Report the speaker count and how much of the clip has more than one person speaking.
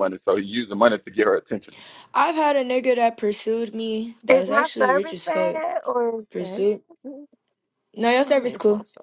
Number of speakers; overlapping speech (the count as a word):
three, about 25%